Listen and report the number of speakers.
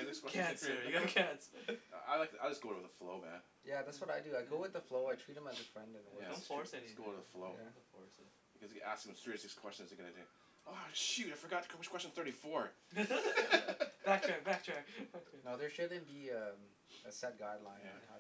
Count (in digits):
3